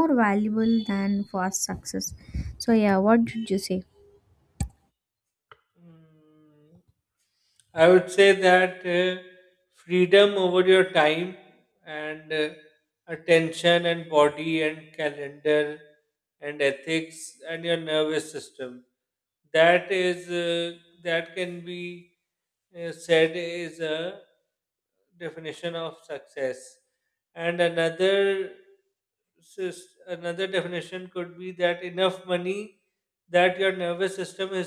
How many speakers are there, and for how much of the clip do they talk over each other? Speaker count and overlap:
2, no overlap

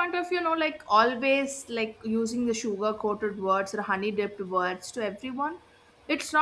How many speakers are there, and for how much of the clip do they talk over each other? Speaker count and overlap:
1, no overlap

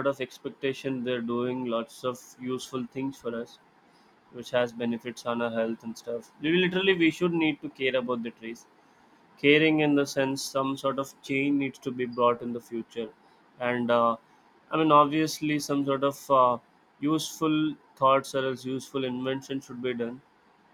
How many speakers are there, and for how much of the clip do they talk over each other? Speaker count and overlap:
1, no overlap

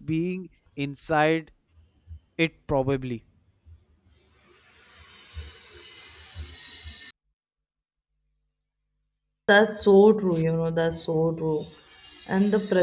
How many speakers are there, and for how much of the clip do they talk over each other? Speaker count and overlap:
2, no overlap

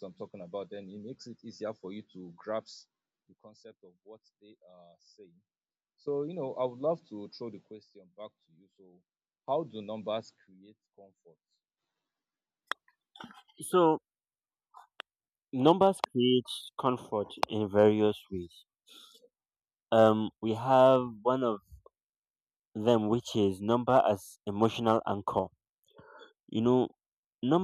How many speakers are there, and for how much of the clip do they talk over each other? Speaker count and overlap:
2, no overlap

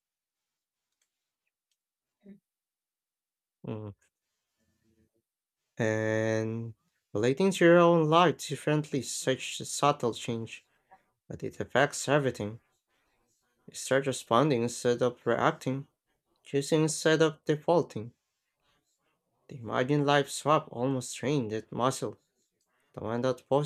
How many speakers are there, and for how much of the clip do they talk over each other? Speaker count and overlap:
1, no overlap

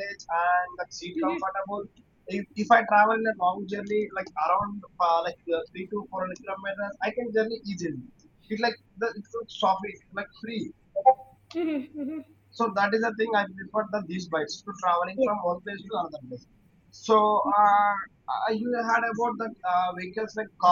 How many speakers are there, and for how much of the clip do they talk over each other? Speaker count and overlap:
2, about 2%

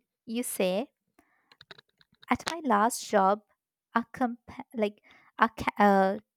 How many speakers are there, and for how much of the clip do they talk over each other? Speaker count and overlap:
1, no overlap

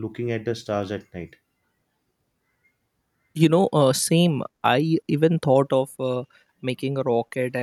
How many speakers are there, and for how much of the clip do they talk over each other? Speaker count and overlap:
2, no overlap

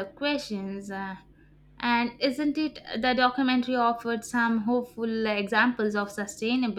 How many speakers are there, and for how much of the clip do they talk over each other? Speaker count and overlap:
1, no overlap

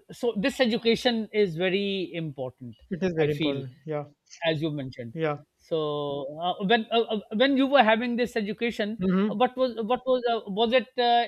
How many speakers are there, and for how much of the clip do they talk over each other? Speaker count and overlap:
2, about 4%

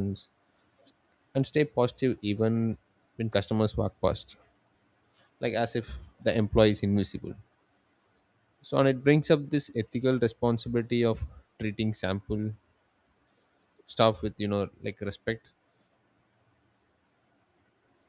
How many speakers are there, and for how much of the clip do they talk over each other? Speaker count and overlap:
1, no overlap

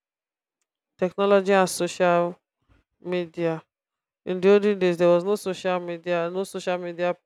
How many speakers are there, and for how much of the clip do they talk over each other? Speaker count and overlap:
1, no overlap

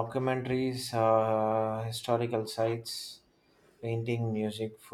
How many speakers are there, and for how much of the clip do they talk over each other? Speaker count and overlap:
1, no overlap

